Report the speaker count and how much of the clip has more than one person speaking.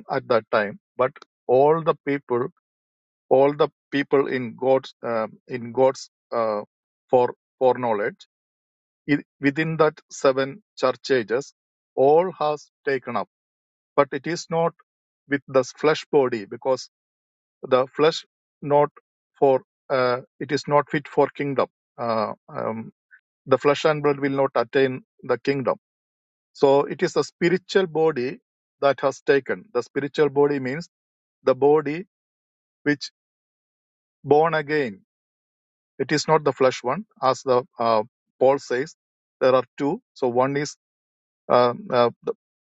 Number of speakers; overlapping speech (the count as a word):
one, no overlap